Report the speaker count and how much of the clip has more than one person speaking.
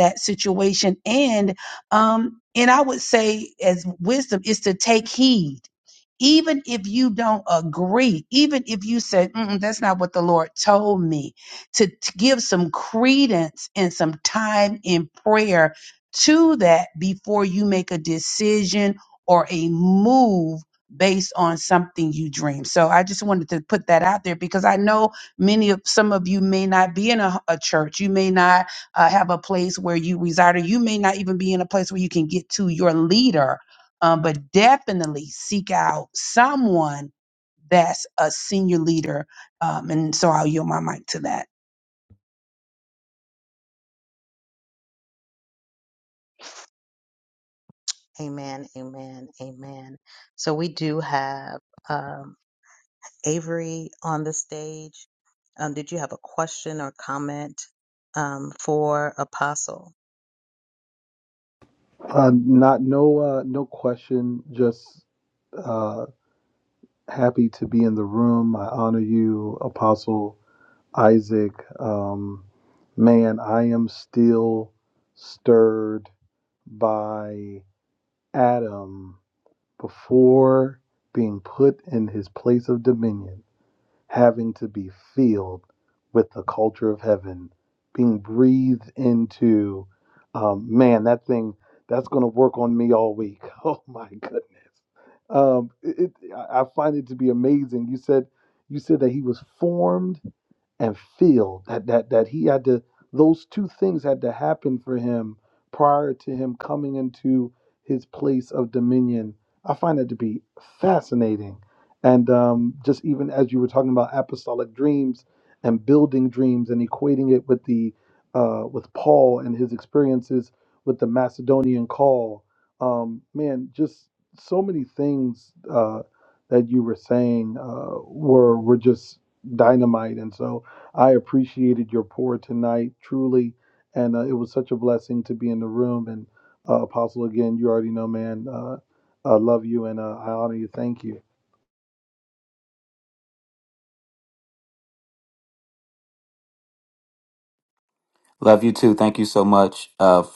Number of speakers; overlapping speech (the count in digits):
4, no overlap